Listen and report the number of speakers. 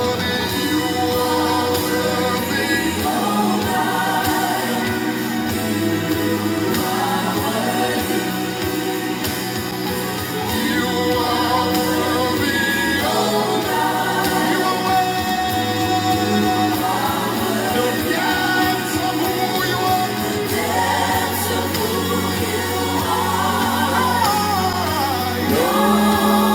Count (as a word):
zero